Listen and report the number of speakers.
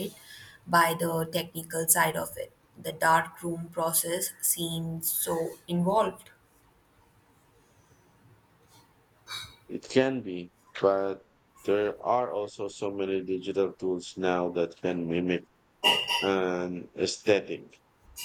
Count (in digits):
2